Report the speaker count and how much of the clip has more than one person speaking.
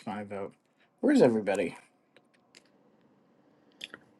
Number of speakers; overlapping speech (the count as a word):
one, no overlap